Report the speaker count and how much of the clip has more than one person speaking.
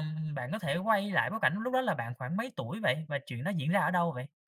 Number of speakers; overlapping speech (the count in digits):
1, no overlap